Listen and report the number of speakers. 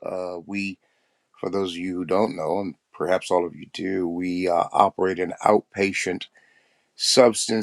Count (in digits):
1